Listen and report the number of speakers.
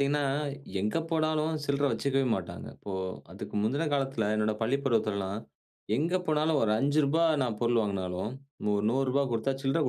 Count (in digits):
1